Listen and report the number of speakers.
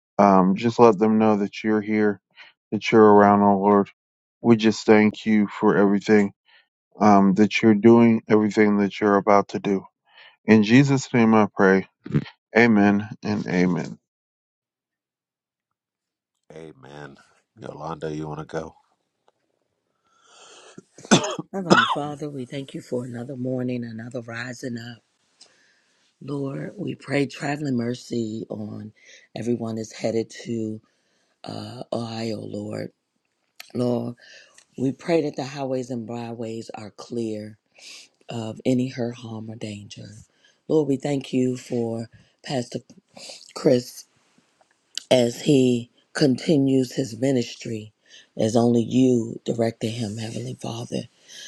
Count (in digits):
3